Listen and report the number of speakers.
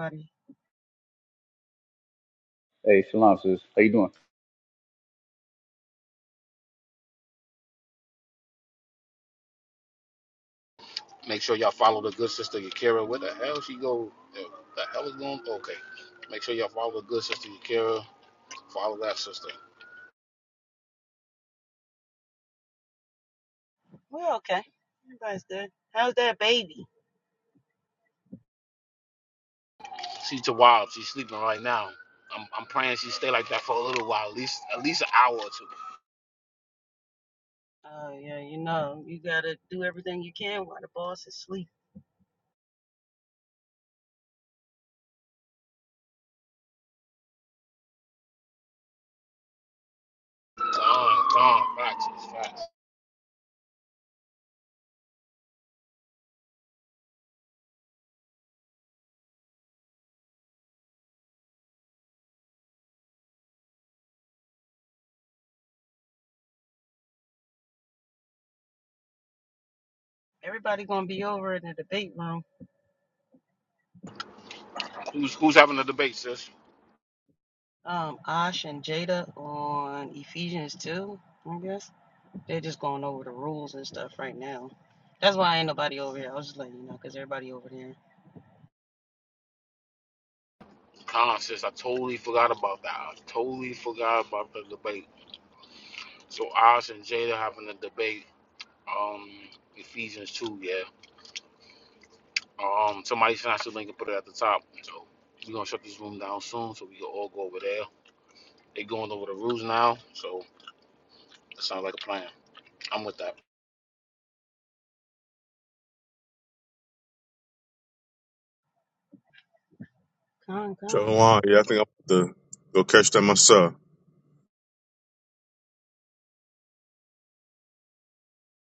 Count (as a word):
four